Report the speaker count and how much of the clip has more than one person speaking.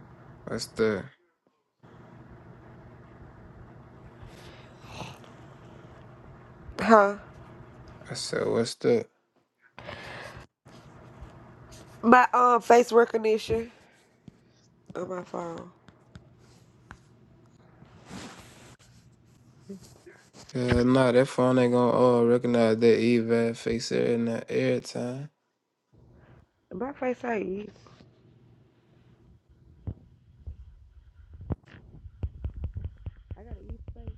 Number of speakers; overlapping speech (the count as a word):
two, no overlap